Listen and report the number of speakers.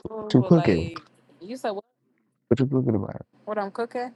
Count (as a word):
two